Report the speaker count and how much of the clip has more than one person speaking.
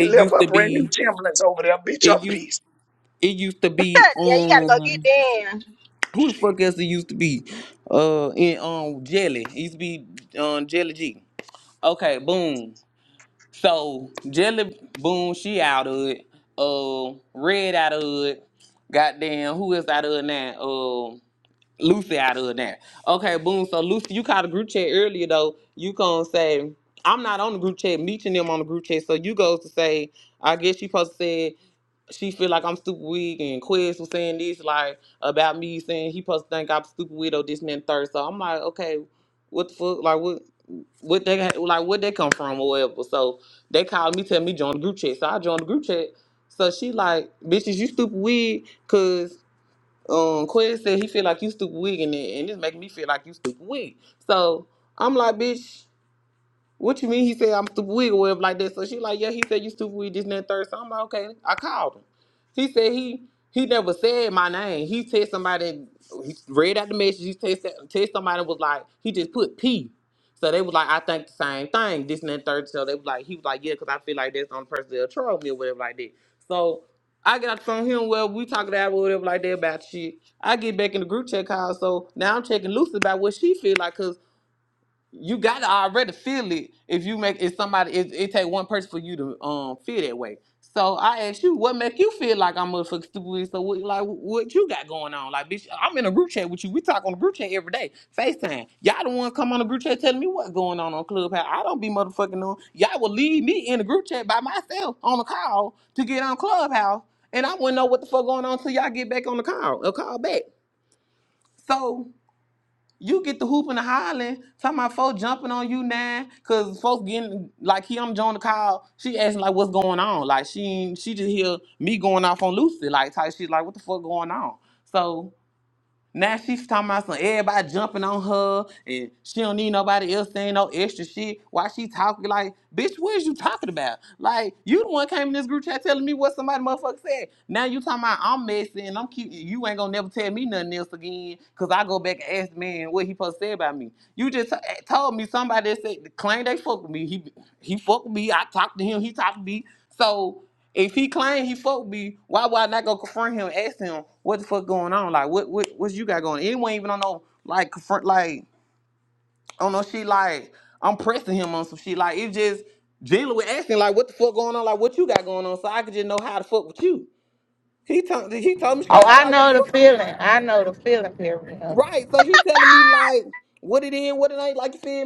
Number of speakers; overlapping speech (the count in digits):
4, about 2%